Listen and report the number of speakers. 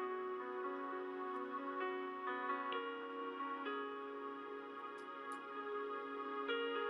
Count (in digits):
0